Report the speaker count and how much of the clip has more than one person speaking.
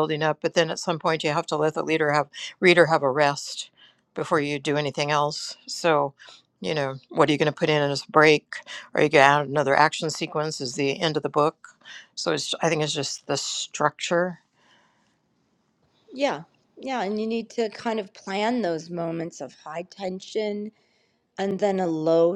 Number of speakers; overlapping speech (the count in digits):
2, no overlap